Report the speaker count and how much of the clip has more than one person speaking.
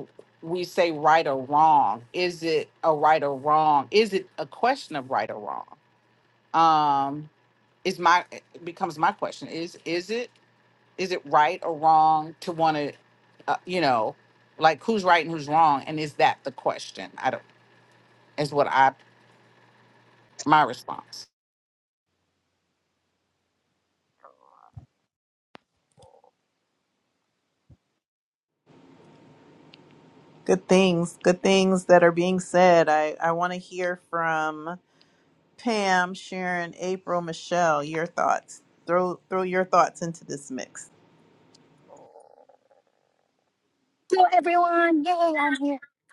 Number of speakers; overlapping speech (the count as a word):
three, no overlap